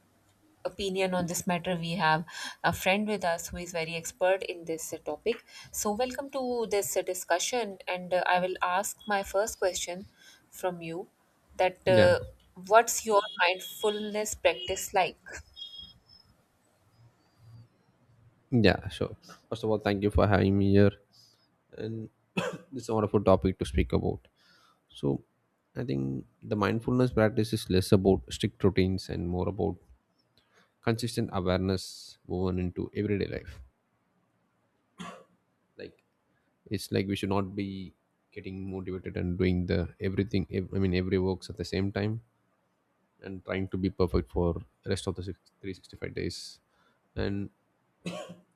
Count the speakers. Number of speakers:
2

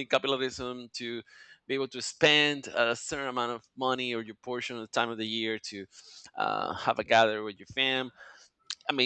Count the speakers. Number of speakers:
1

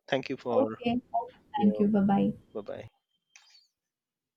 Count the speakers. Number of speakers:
2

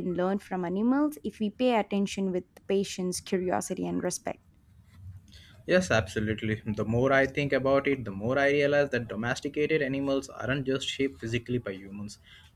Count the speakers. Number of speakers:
2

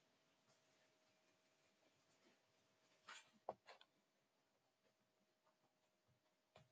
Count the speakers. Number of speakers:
0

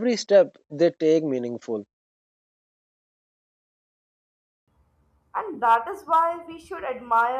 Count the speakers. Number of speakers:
2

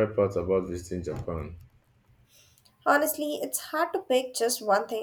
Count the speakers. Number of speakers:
2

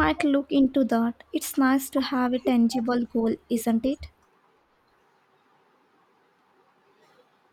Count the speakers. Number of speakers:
1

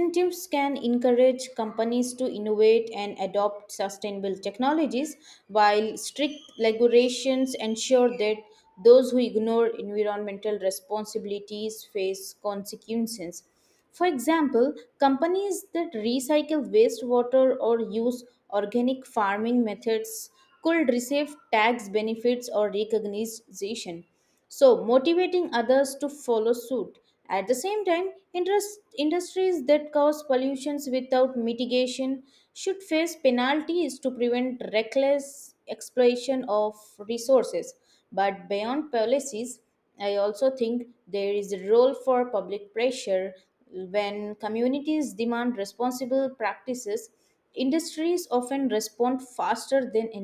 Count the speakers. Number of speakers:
1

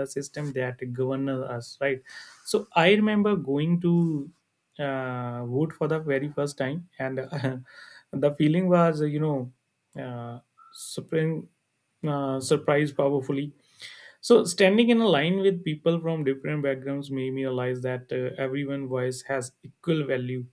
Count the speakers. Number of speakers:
1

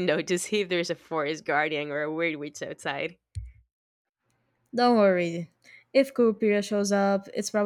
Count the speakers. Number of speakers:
2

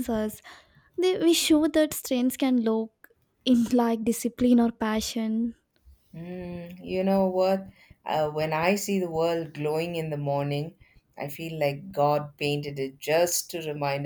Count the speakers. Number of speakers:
2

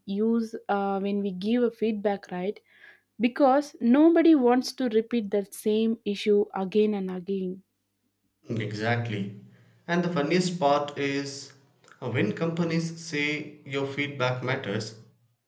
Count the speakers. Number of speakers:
2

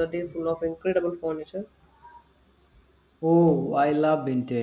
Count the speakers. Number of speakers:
2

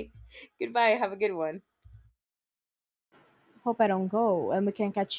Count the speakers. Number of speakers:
2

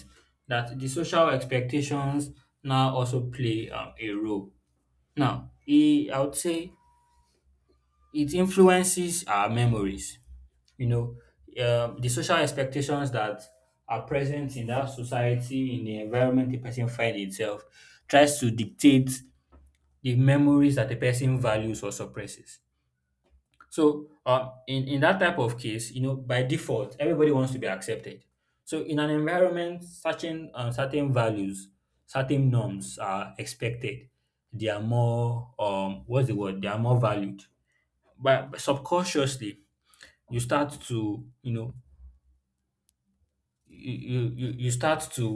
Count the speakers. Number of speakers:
1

